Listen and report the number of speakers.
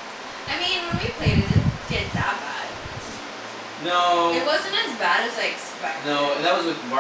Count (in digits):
2